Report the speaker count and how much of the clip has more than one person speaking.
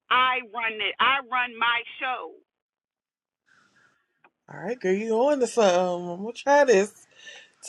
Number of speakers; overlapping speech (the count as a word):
two, no overlap